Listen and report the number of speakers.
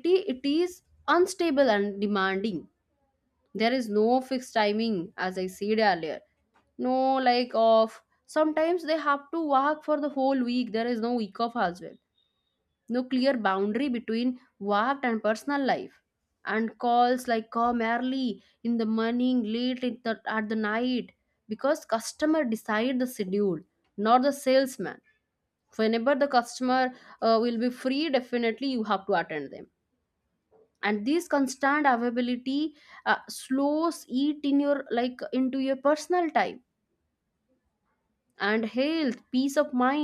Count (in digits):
1